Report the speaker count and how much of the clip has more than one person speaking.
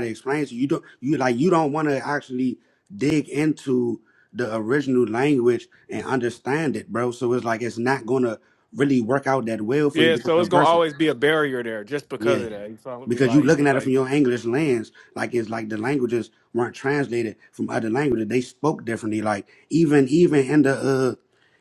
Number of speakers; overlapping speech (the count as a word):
two, about 9%